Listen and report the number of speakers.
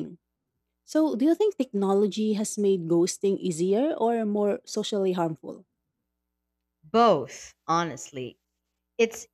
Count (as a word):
two